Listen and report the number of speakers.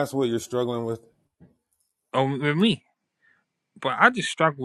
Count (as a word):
two